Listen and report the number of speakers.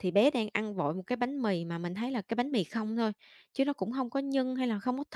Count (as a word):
one